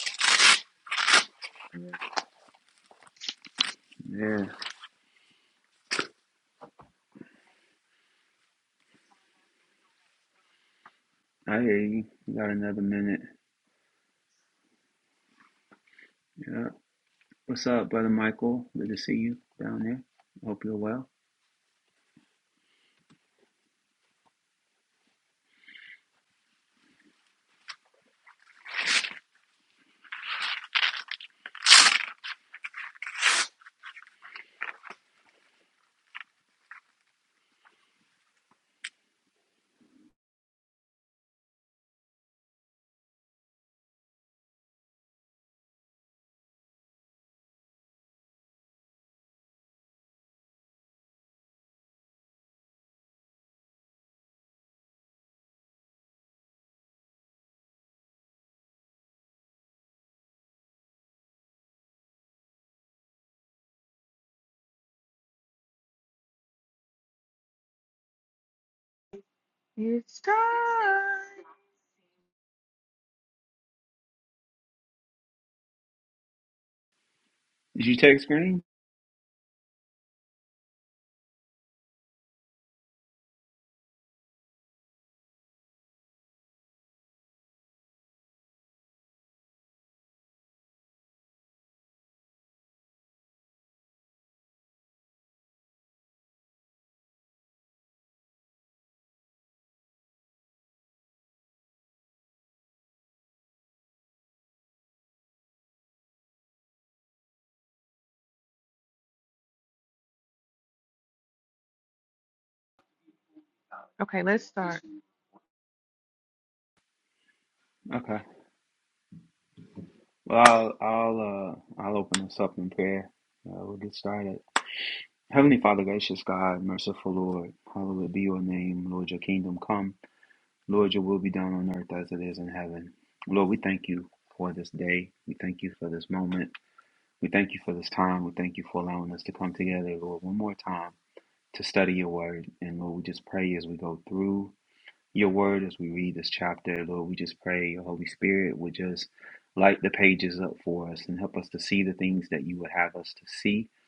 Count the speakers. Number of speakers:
two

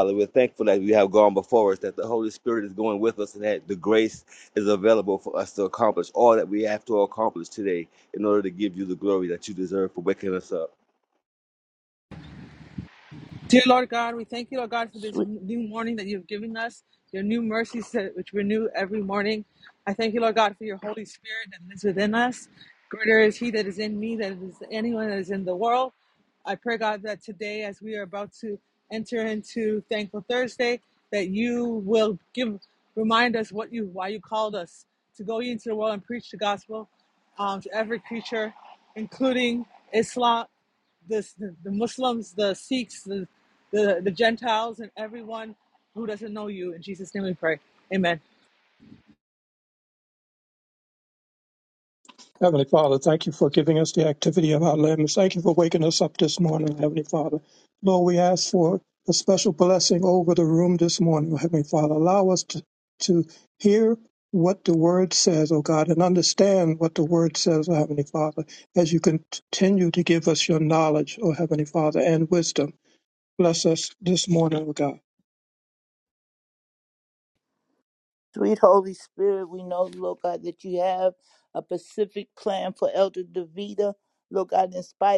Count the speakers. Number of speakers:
four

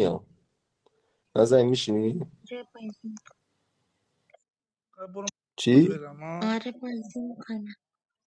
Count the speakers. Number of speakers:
three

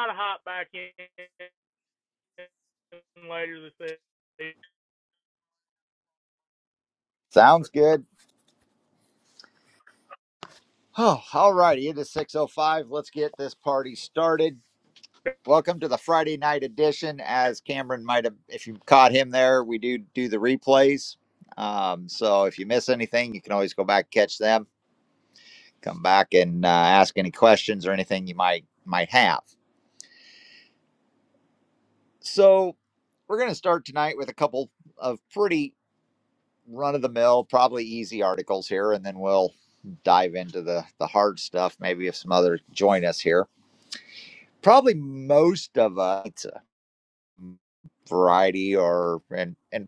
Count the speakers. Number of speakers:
two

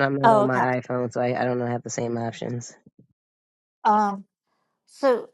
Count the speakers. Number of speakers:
two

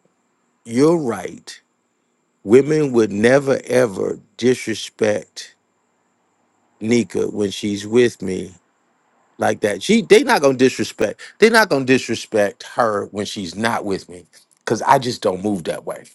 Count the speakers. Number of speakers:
one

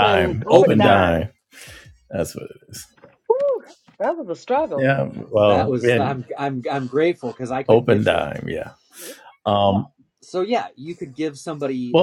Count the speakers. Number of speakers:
three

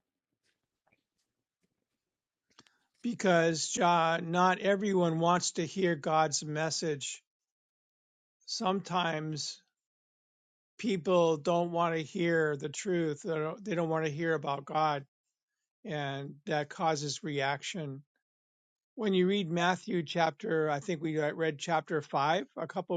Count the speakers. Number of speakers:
one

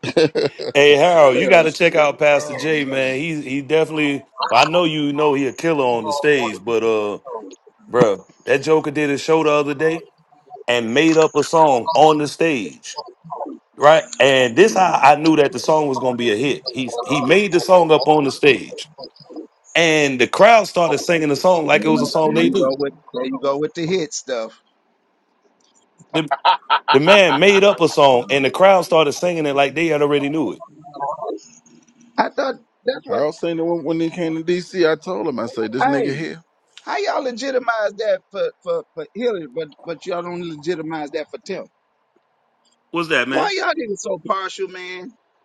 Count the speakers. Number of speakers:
three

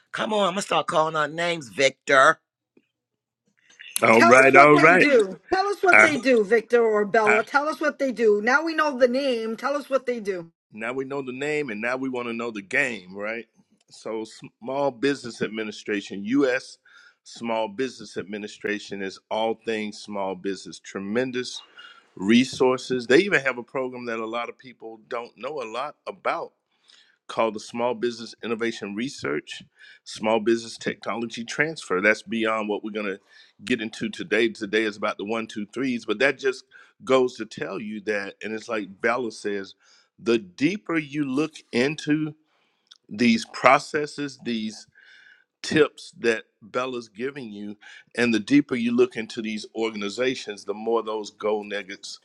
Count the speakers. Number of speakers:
three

